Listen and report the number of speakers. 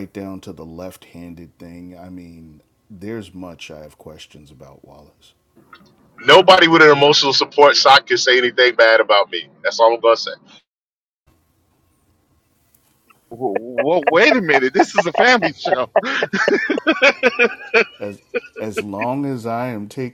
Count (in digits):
3